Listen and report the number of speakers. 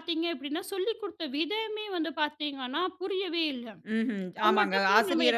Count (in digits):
2